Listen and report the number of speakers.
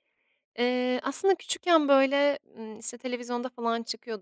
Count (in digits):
1